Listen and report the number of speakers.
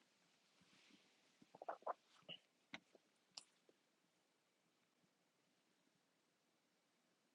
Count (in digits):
0